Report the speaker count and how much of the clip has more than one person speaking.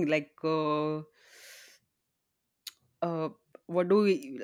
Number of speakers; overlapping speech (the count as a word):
one, no overlap